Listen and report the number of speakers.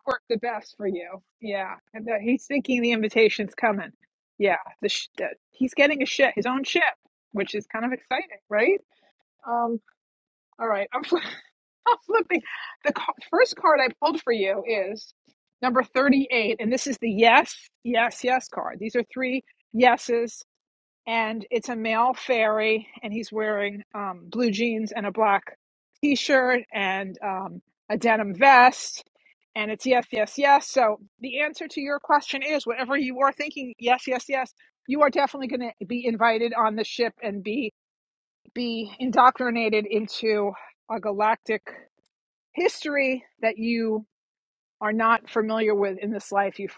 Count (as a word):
one